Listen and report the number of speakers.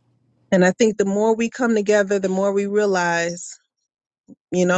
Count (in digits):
1